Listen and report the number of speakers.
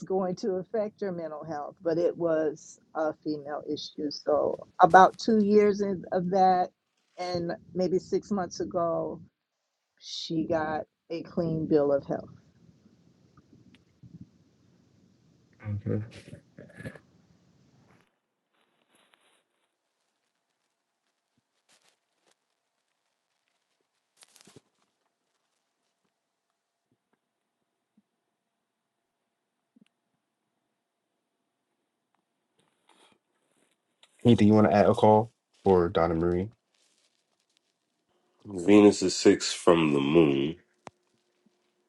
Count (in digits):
3